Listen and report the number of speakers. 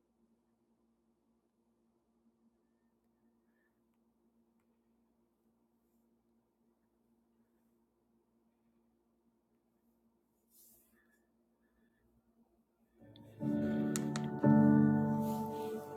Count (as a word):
zero